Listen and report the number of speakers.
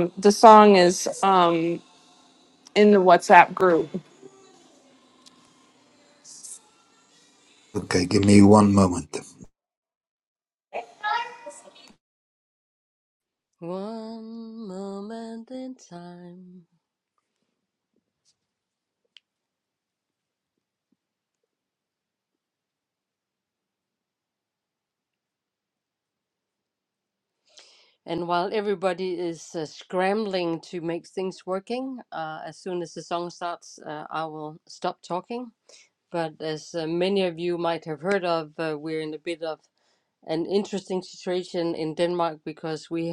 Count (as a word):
three